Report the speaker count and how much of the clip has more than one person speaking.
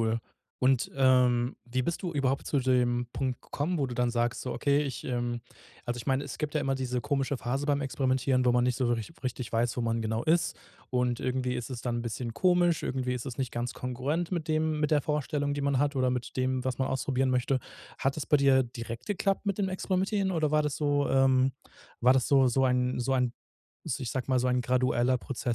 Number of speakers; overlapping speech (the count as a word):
one, no overlap